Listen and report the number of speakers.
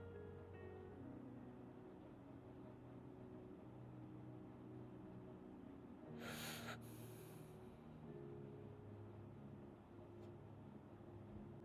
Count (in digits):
0